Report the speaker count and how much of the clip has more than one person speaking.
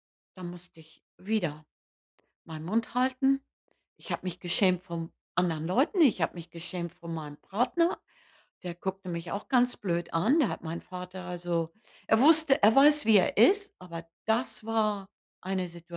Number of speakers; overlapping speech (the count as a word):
one, no overlap